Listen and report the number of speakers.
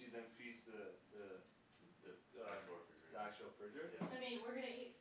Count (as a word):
three